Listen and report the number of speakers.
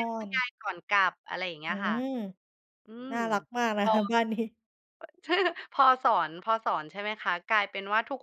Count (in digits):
2